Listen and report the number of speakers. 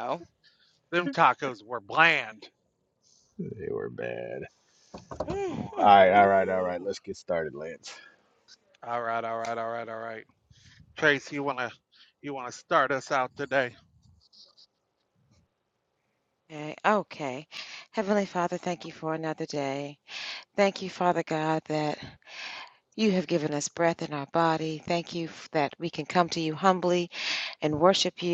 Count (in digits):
3